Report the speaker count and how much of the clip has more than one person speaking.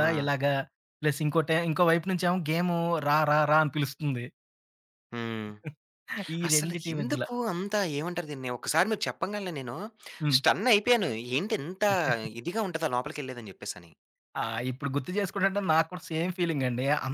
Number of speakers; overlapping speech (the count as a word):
two, about 7%